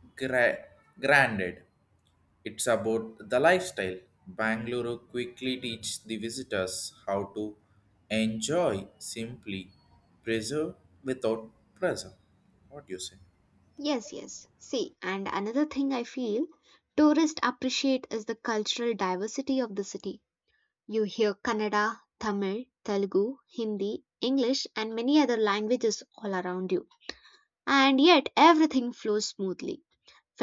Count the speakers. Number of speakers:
2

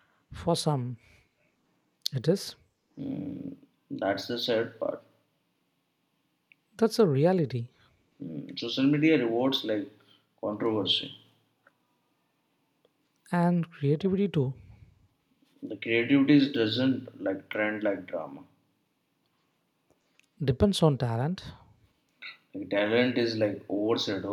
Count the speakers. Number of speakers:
2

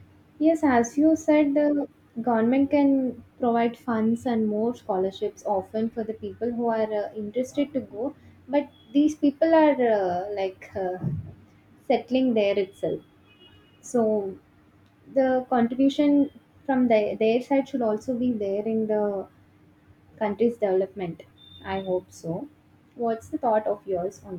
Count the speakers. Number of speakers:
1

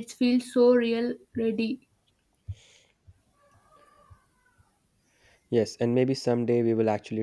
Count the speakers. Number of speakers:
2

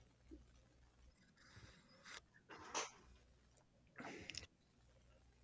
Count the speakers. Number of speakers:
0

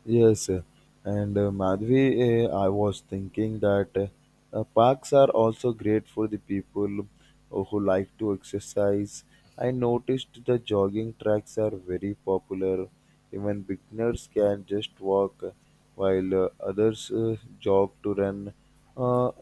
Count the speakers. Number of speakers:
1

